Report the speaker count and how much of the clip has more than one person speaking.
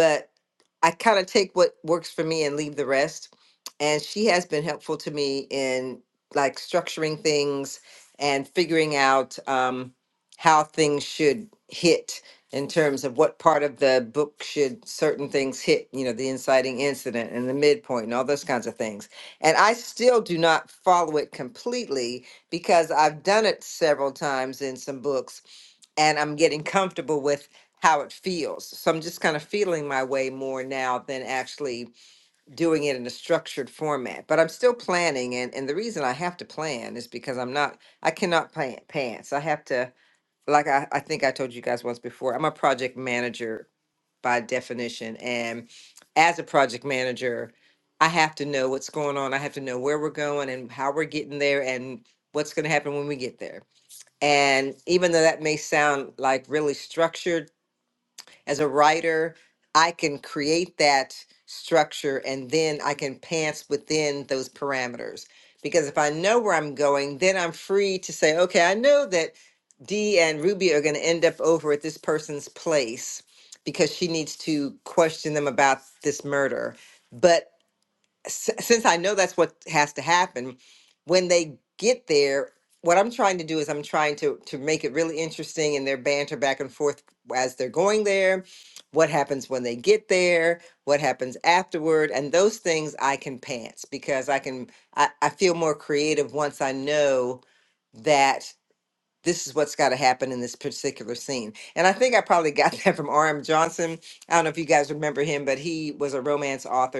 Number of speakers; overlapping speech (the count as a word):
one, no overlap